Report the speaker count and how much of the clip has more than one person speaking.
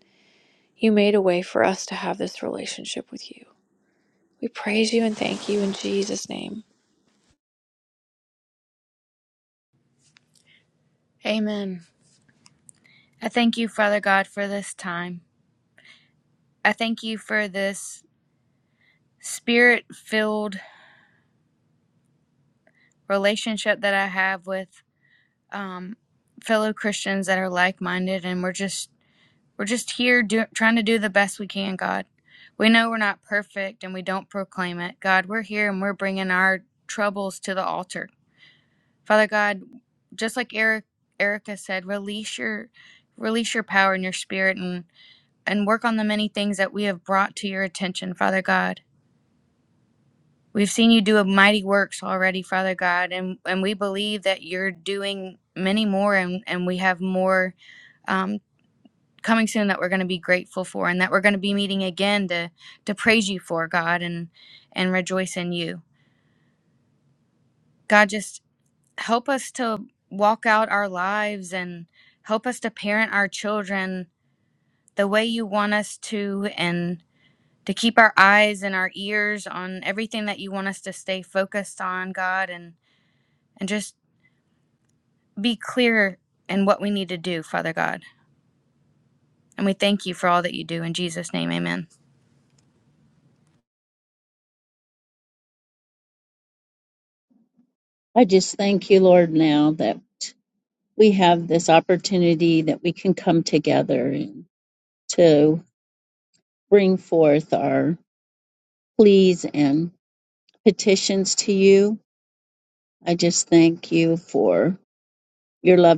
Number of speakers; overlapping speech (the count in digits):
3, no overlap